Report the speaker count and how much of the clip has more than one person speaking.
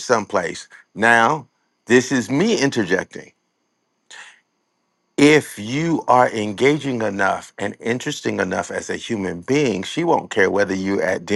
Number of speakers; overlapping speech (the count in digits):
1, no overlap